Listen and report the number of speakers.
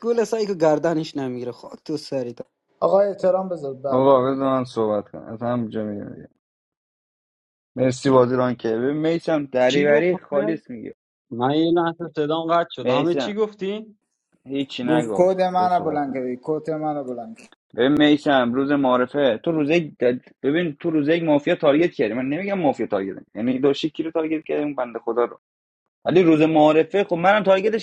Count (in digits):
4